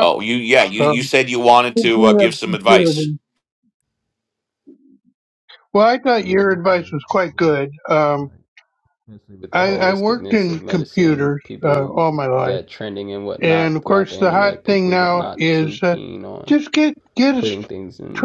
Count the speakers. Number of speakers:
three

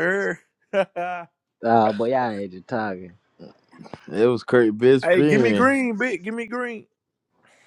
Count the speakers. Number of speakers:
three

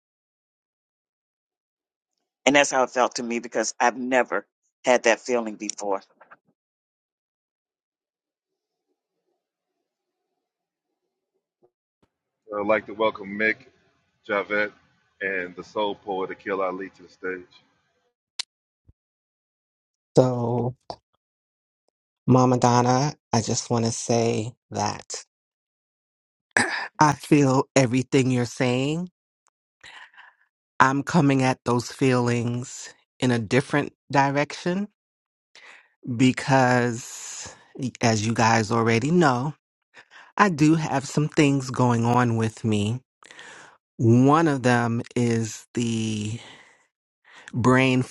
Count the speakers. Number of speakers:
three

